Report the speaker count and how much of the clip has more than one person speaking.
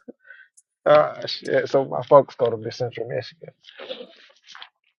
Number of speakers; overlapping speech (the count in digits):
1, no overlap